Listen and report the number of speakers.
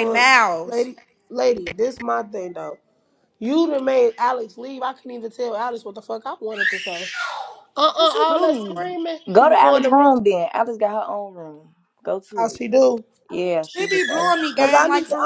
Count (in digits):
3